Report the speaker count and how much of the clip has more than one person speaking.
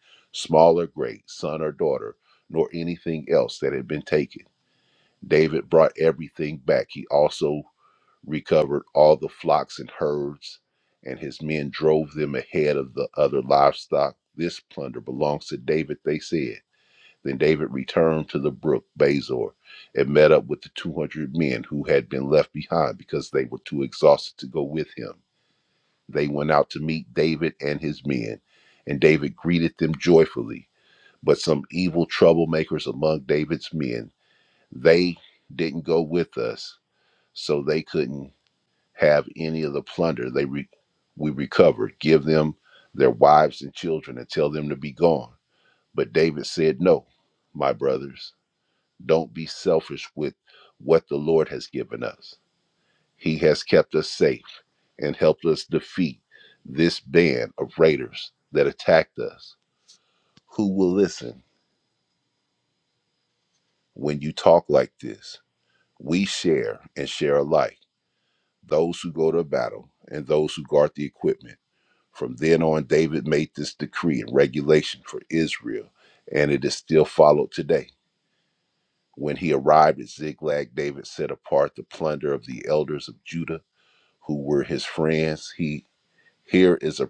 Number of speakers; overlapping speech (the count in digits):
1, no overlap